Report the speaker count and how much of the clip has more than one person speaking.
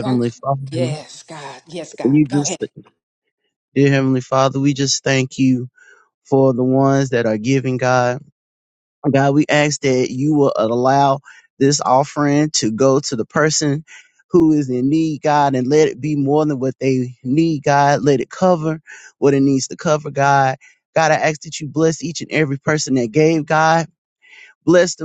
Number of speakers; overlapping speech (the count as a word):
two, about 2%